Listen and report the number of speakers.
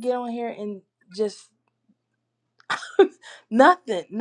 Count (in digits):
1